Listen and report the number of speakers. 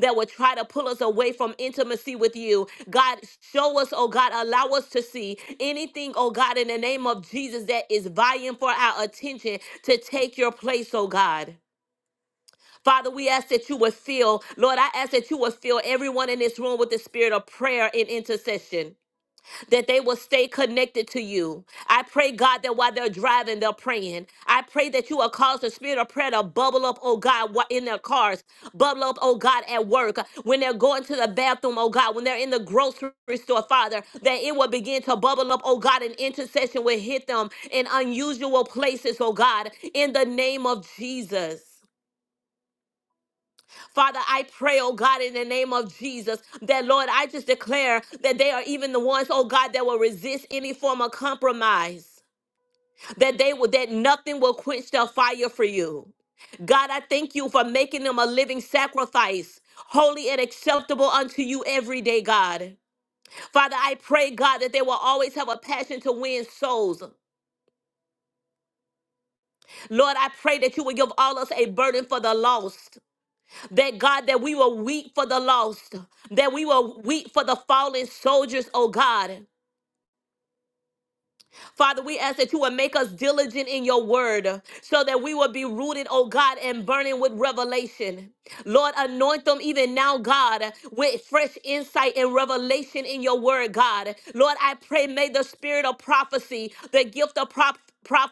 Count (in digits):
1